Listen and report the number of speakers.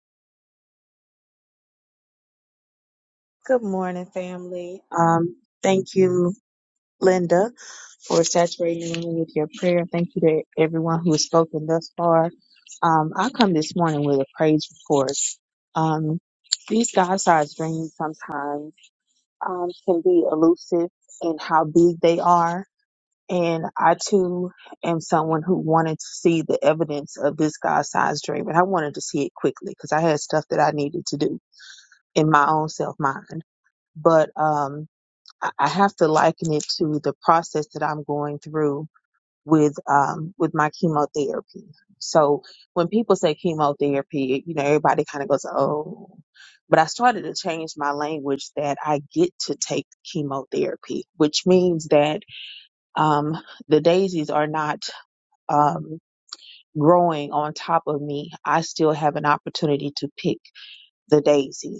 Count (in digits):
1